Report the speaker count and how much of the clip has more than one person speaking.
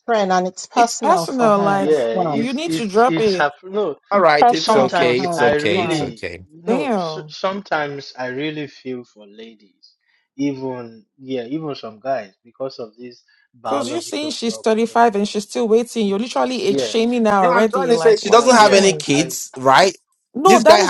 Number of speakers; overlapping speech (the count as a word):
four, about 43%